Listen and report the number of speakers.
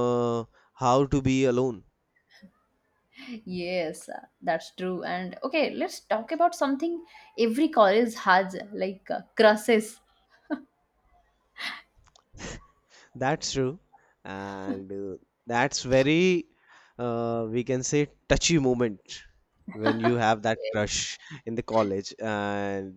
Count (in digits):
2